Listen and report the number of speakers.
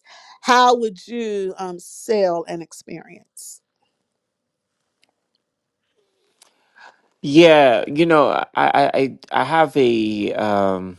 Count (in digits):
2